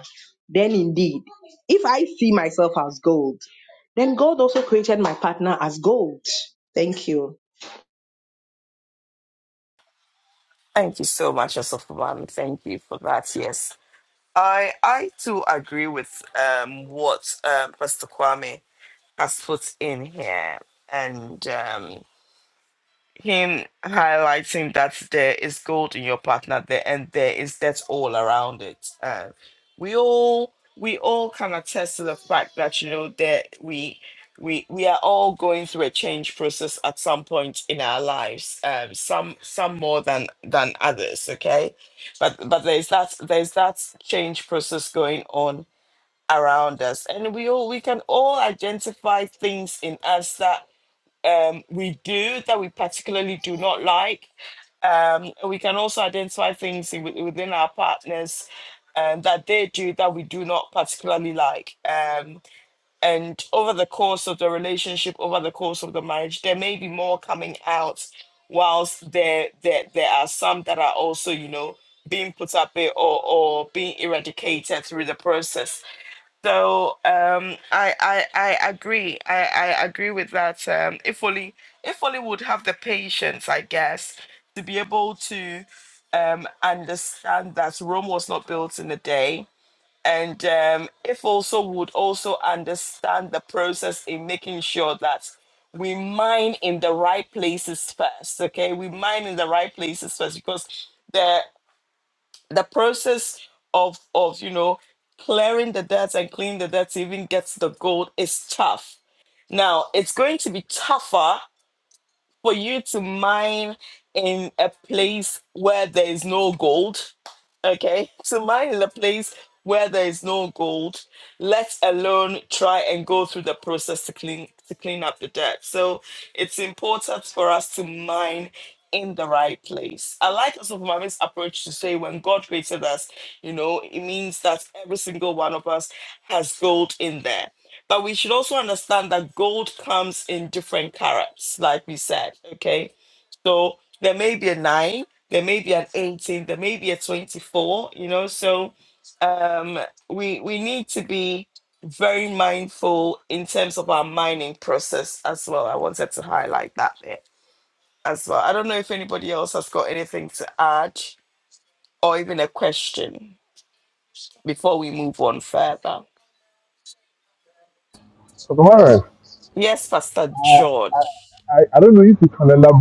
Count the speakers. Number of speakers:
3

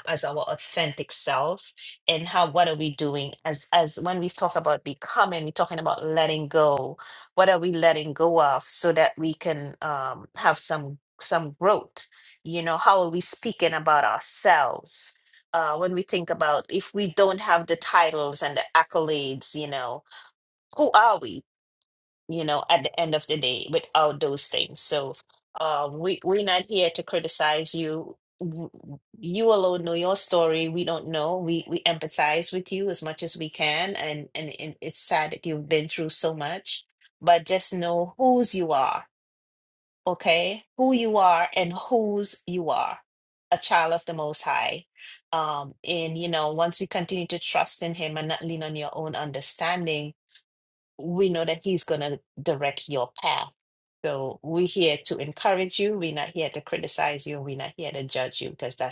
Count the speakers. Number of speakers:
1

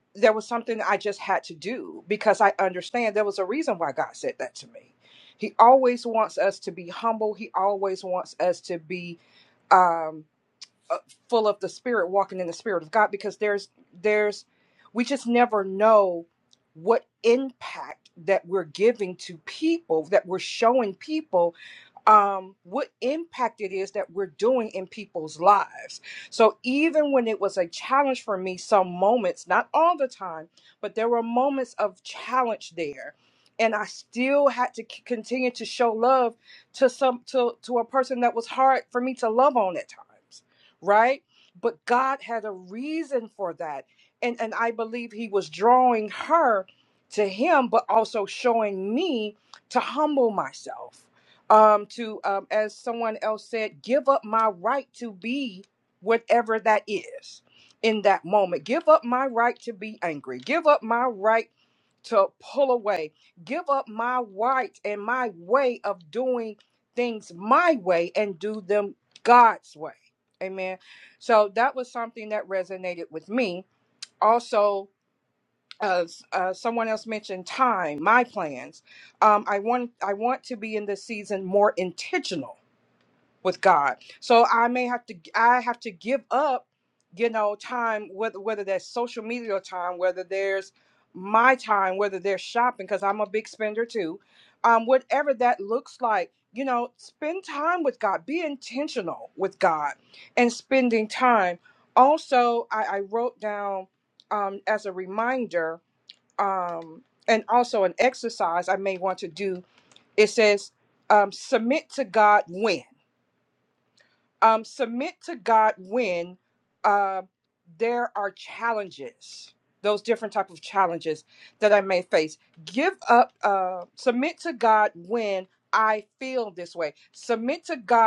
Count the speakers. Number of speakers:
1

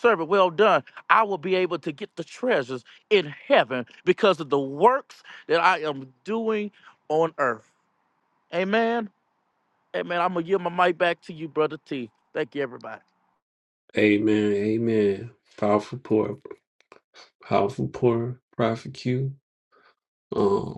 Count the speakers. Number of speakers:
2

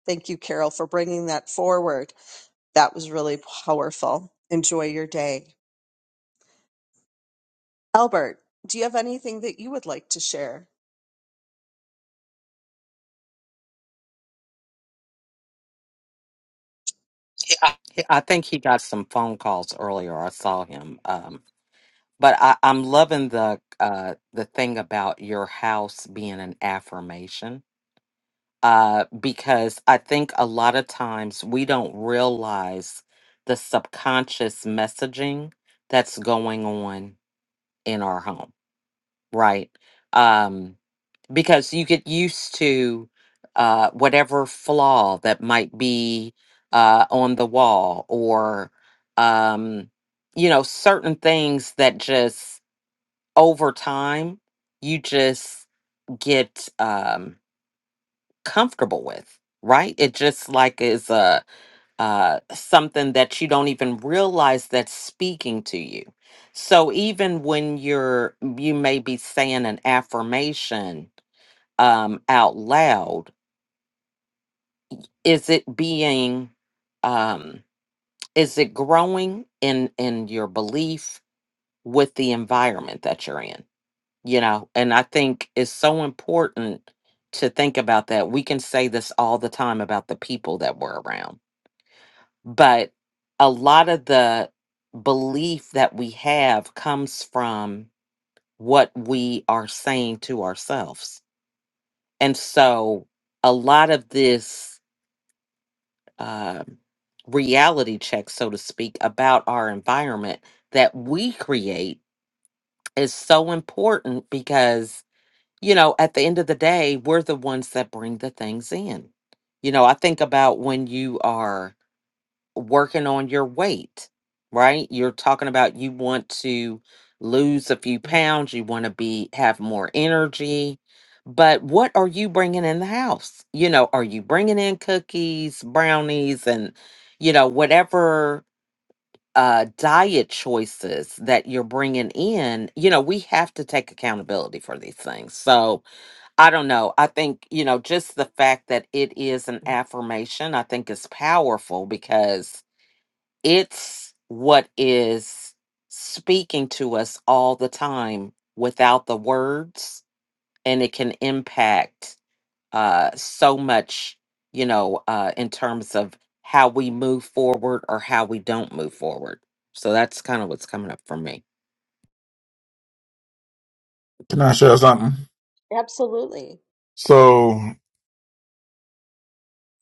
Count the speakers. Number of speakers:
3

